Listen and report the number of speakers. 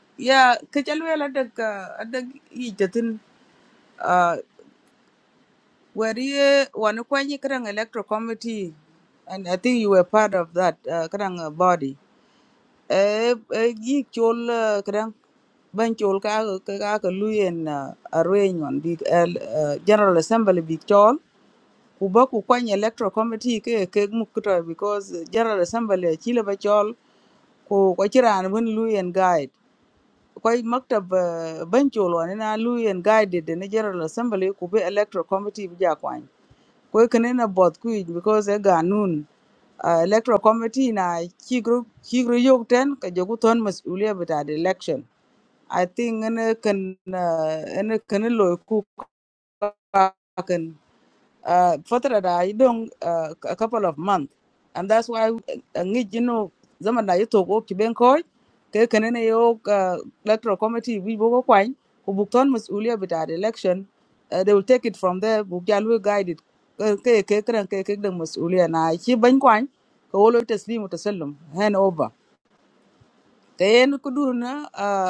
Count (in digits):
1